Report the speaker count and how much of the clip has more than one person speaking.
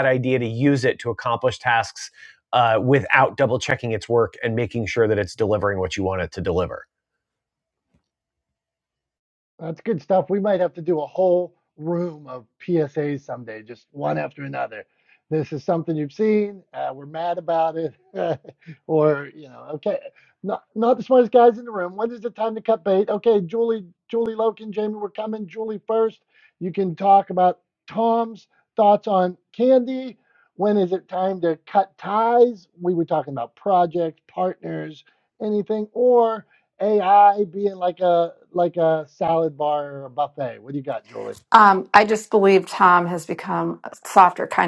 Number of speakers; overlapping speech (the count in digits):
3, no overlap